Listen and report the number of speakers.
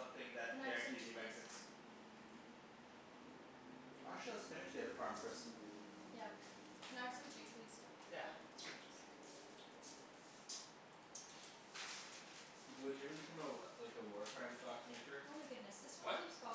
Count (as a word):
three